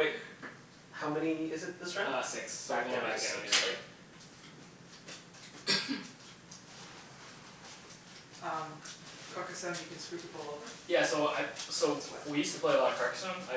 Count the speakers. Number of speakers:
3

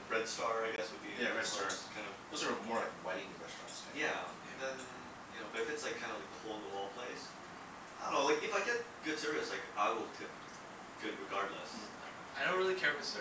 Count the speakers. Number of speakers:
3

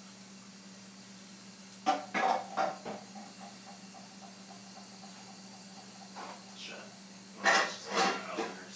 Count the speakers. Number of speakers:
1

